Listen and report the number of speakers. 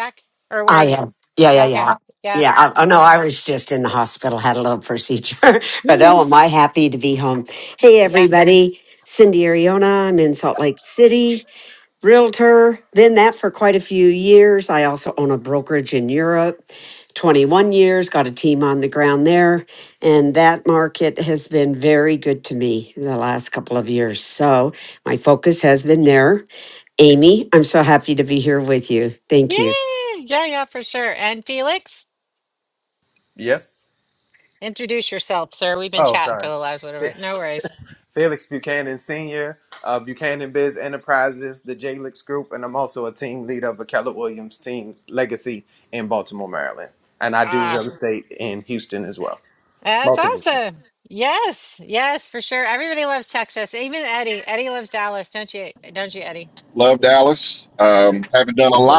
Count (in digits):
4